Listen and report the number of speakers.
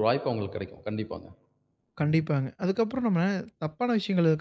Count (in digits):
2